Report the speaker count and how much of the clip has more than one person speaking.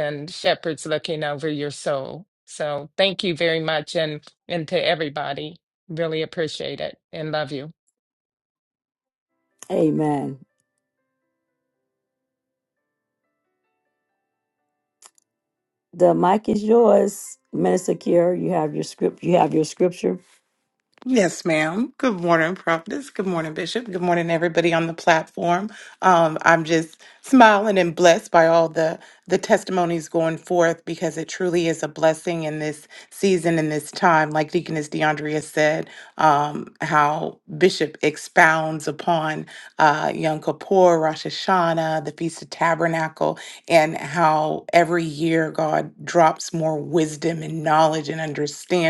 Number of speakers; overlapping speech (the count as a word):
three, no overlap